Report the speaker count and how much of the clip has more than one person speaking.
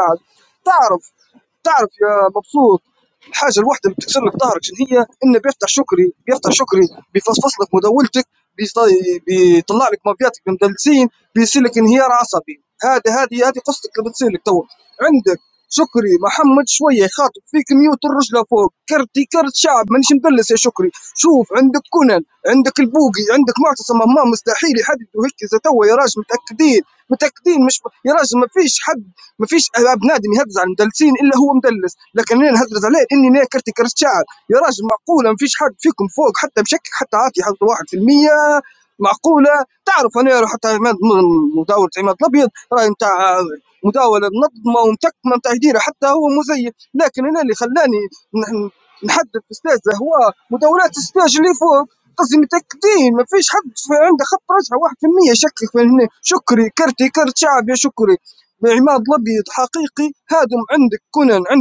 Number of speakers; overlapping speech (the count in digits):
1, no overlap